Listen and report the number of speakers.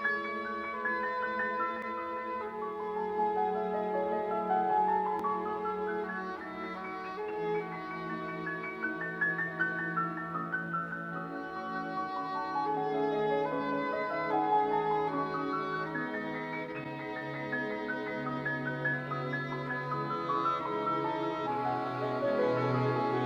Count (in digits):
0